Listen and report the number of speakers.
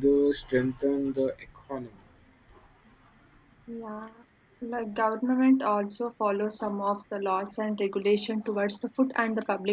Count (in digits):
2